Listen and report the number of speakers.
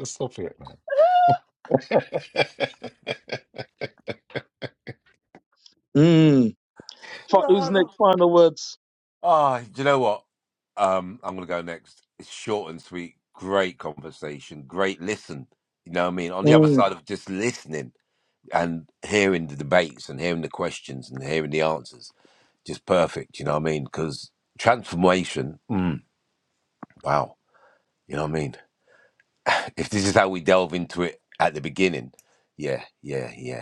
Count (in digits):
3